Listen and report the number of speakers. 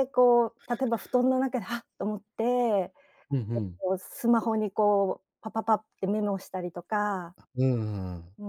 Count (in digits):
2